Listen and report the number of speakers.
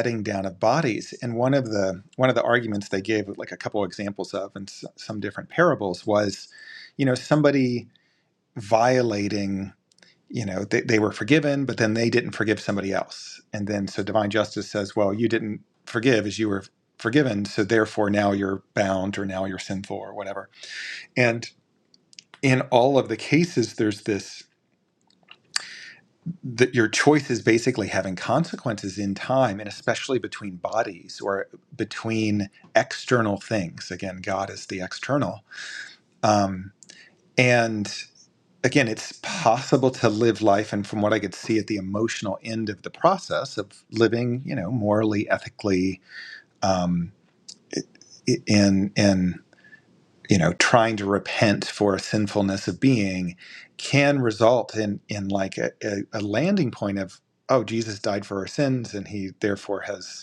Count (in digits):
1